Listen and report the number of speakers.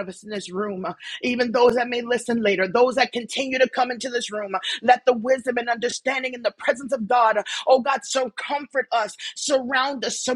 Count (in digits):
1